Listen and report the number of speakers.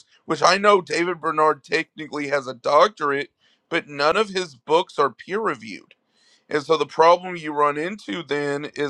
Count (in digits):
1